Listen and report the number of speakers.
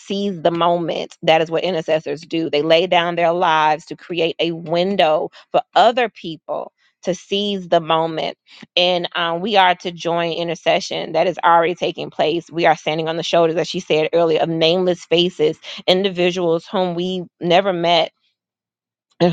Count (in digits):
1